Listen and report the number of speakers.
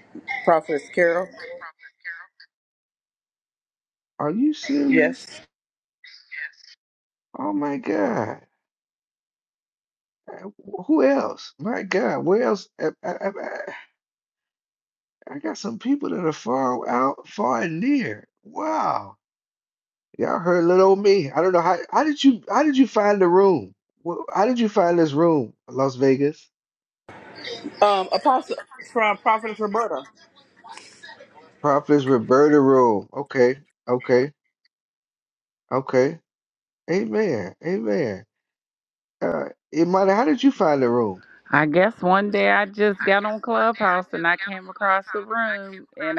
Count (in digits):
3